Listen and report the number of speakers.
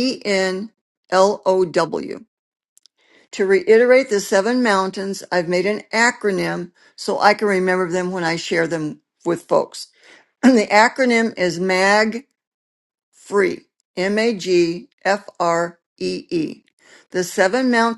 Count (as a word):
one